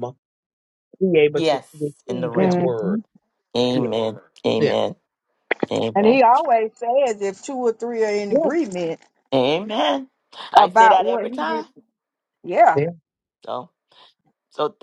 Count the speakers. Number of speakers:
3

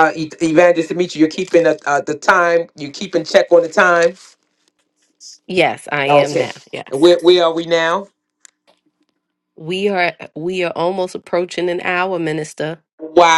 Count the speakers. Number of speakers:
2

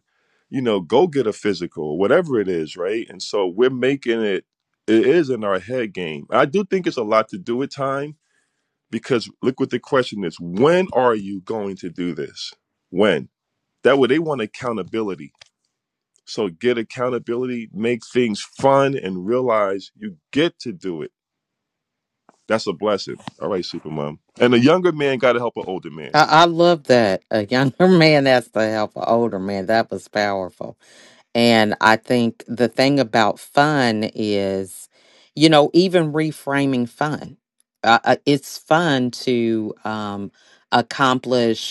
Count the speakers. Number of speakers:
2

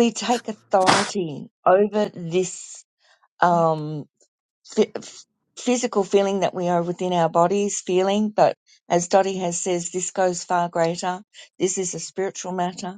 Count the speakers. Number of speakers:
1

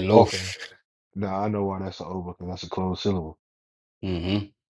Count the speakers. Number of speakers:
2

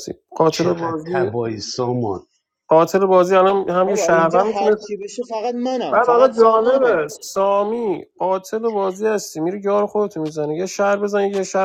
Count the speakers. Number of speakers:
3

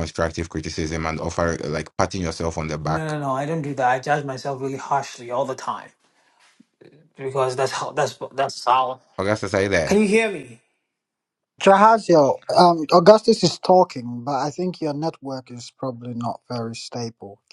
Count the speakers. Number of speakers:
3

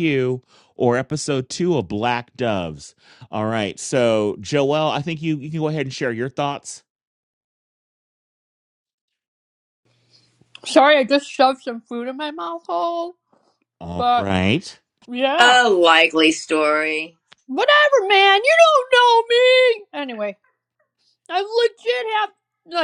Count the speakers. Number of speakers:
3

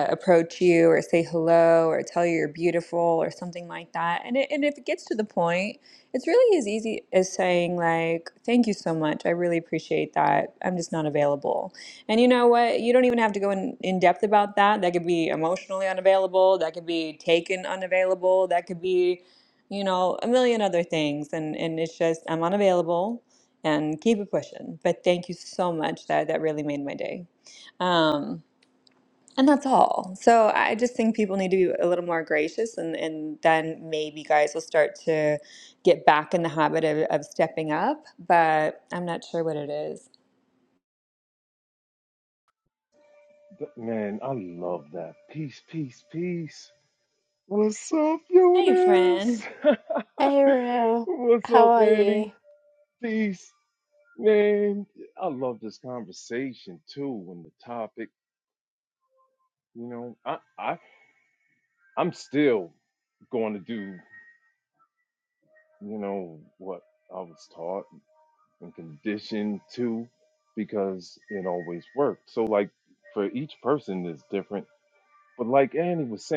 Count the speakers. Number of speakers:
3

